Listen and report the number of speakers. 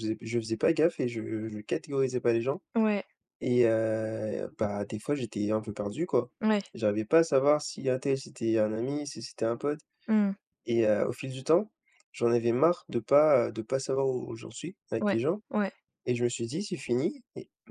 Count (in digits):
2